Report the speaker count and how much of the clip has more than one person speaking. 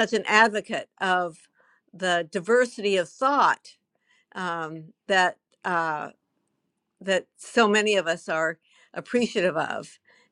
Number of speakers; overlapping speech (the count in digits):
1, no overlap